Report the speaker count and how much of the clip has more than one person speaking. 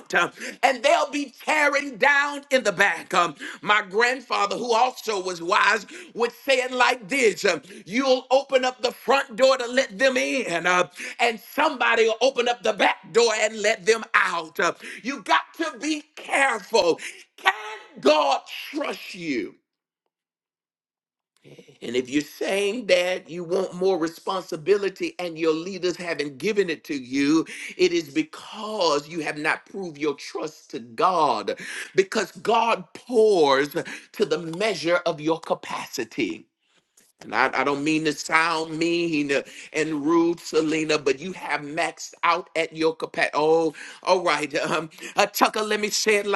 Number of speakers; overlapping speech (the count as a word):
one, no overlap